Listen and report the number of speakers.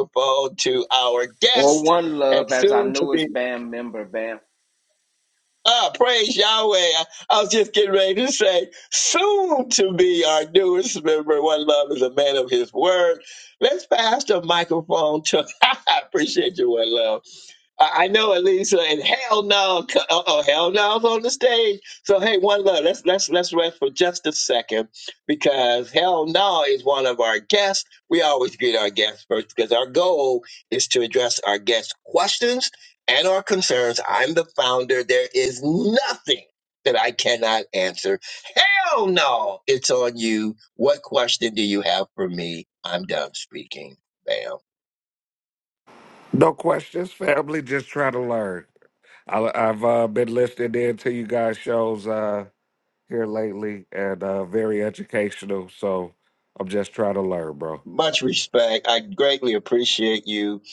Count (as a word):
three